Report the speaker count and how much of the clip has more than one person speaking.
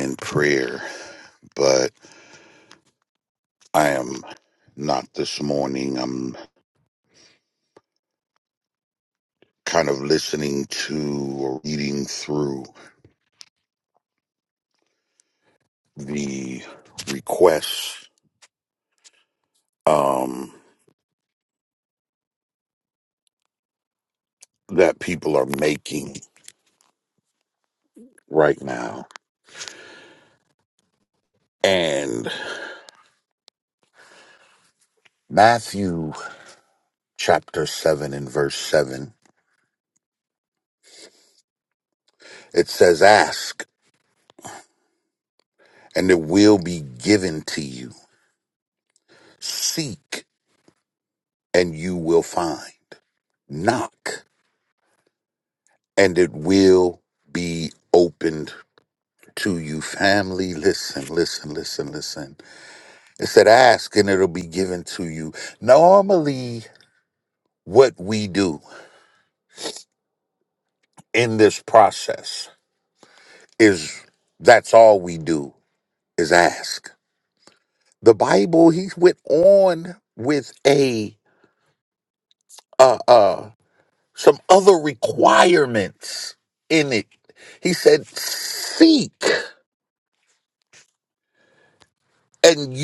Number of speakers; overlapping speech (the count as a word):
one, no overlap